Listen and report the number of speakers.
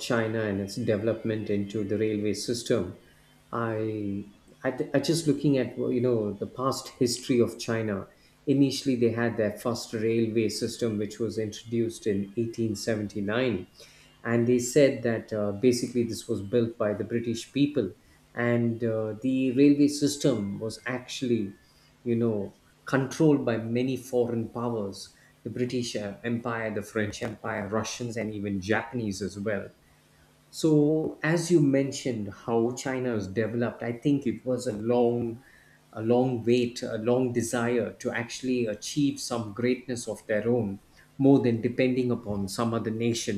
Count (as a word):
one